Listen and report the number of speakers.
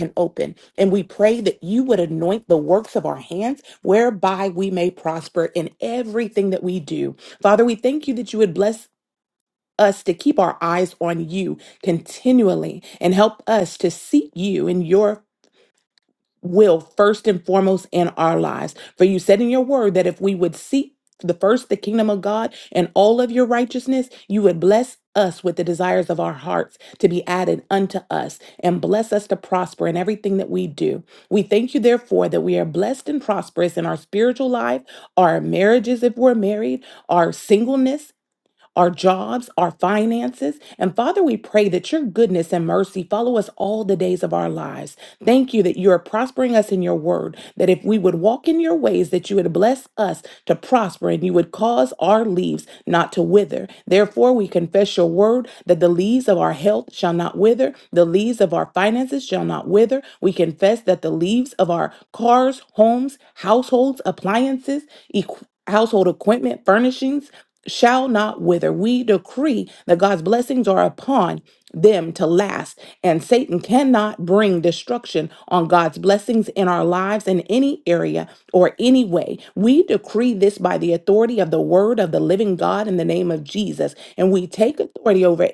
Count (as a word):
one